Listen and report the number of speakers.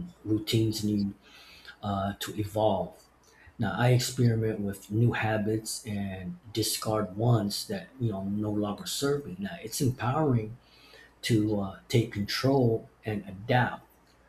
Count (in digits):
1